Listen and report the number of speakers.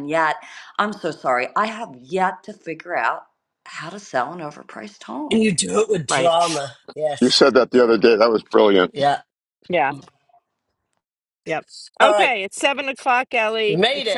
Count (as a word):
four